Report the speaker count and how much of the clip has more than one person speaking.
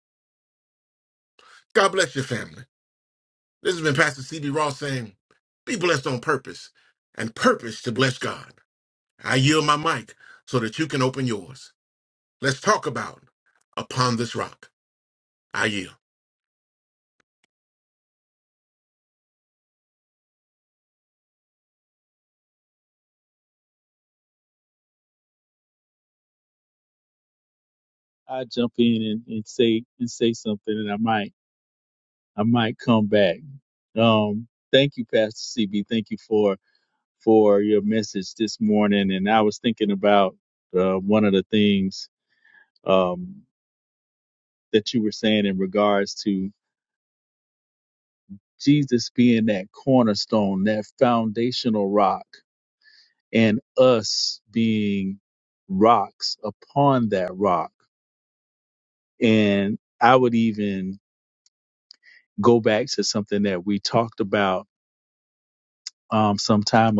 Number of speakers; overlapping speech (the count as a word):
two, no overlap